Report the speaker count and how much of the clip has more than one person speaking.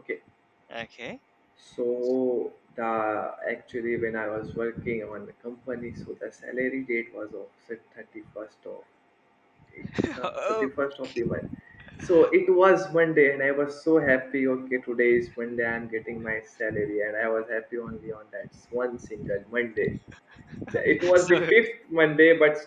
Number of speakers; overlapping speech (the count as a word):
two, about 4%